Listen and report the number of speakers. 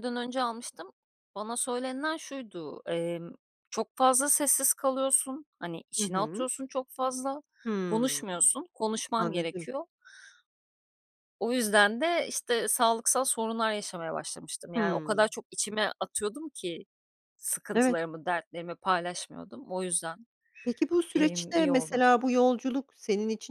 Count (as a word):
two